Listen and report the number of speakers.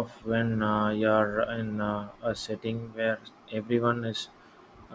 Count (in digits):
1